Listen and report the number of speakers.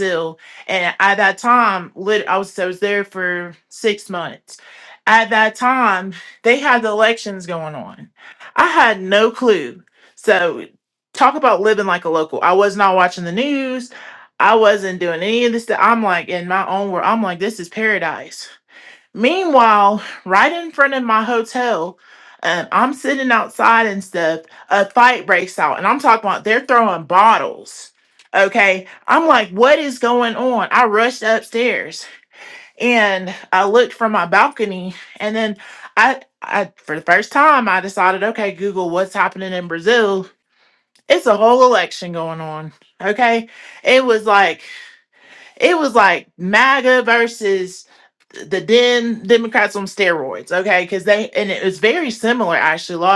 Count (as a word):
one